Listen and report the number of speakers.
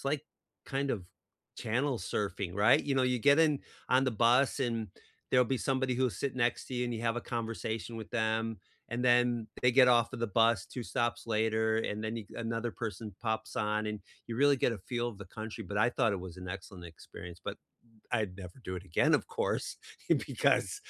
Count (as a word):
one